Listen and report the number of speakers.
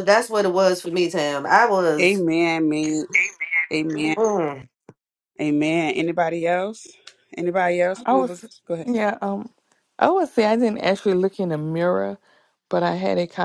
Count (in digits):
3